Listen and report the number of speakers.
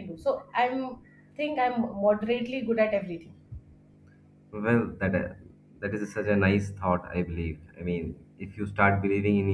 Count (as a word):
two